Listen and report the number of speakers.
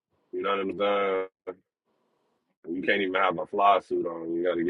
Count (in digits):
1